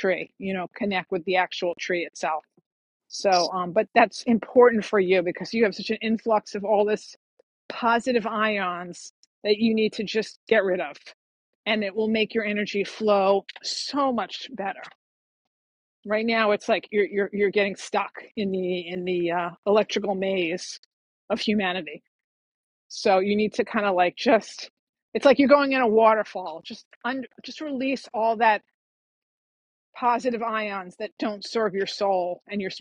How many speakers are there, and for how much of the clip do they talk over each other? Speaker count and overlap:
1, no overlap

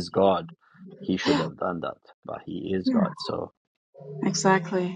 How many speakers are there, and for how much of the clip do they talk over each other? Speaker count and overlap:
2, about 6%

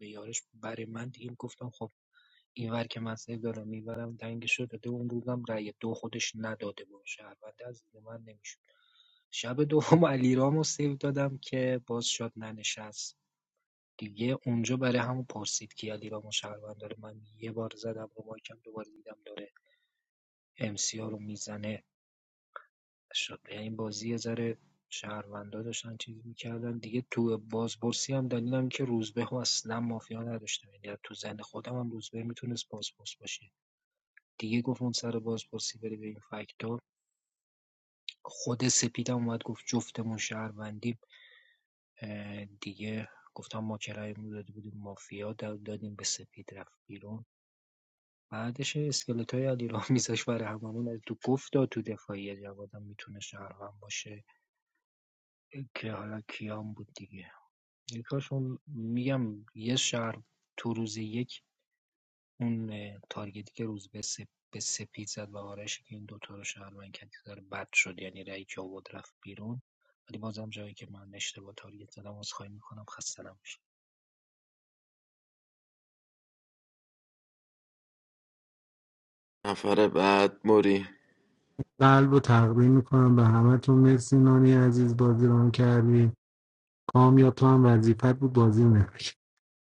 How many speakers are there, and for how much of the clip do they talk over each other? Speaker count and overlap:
3, no overlap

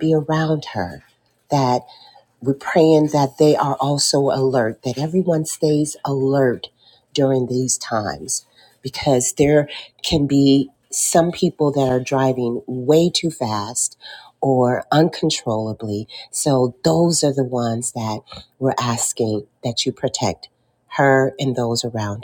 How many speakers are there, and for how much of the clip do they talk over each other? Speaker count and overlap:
1, no overlap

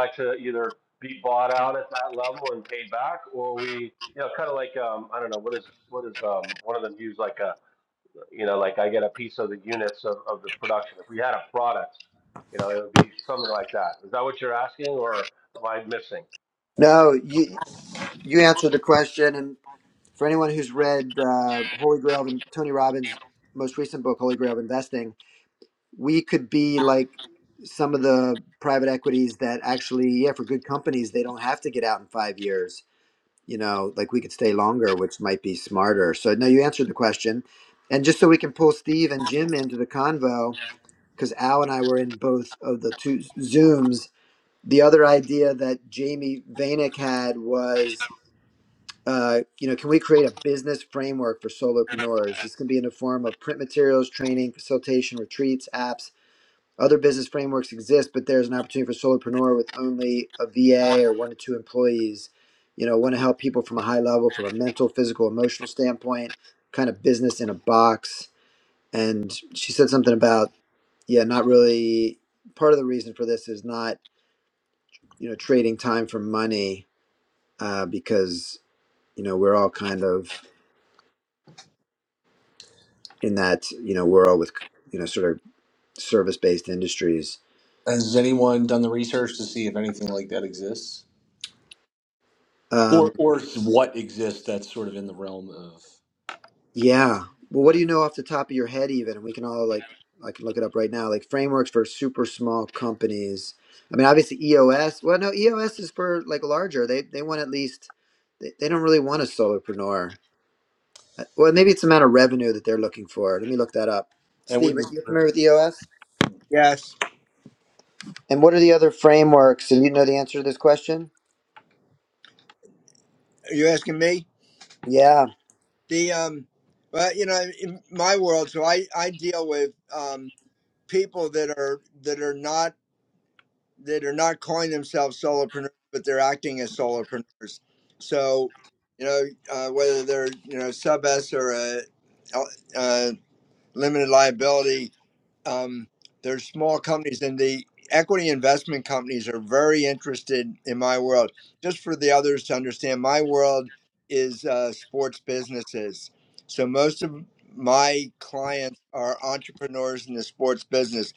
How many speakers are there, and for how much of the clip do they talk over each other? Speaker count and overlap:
4, under 1%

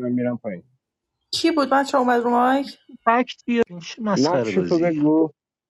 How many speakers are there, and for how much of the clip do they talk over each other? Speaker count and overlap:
3, about 15%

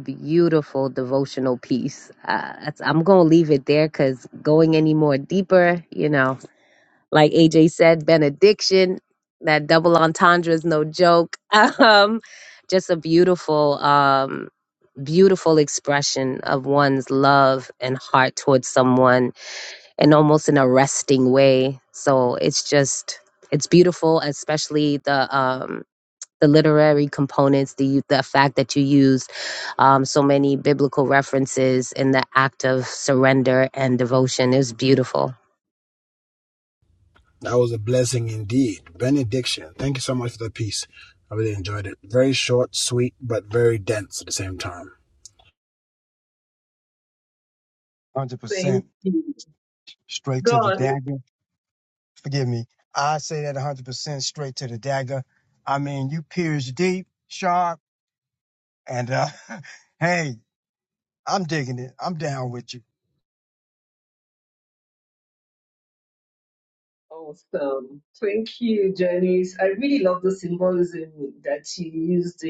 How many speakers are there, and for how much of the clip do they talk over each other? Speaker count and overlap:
4, about 1%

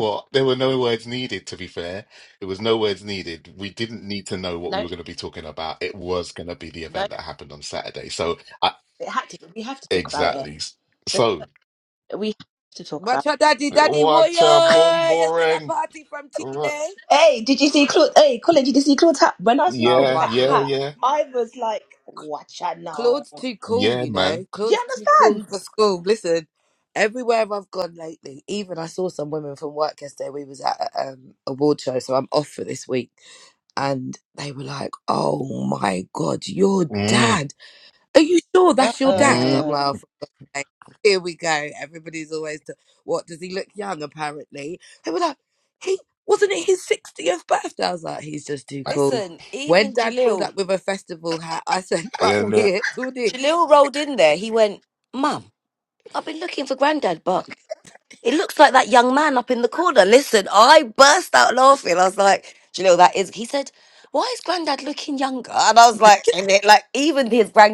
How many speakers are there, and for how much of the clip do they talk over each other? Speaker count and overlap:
4, about 14%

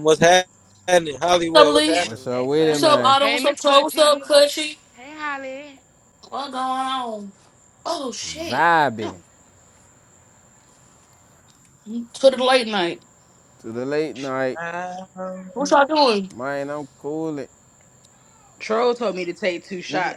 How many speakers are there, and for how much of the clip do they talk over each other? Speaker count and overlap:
5, about 15%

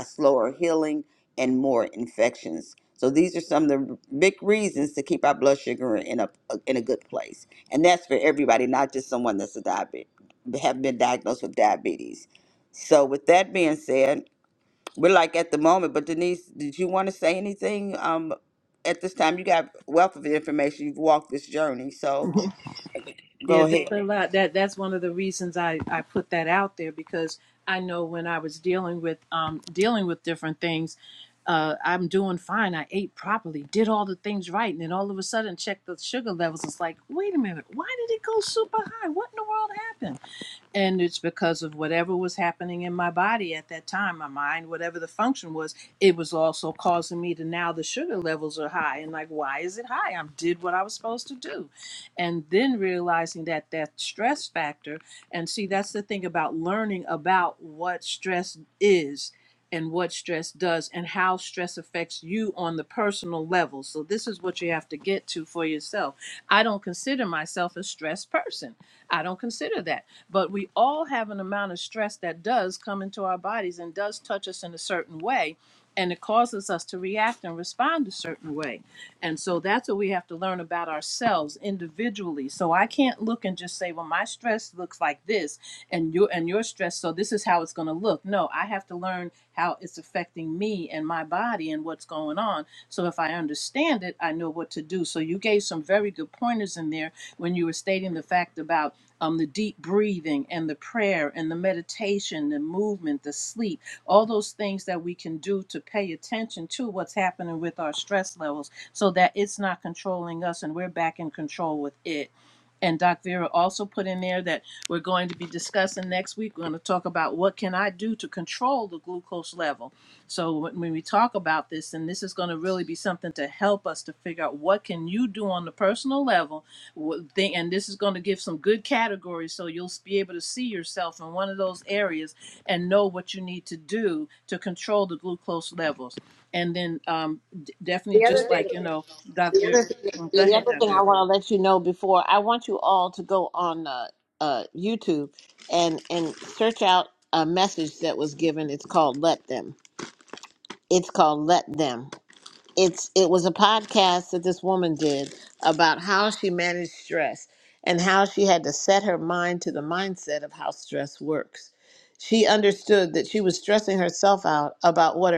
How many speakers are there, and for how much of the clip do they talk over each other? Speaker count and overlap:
3, about 1%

